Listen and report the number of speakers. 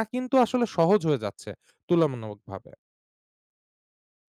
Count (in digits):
1